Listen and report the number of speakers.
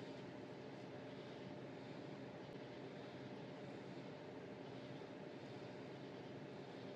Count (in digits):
0